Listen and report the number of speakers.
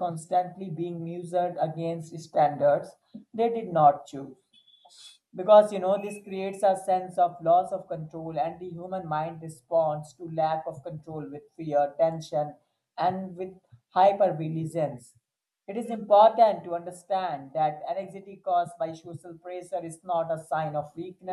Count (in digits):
1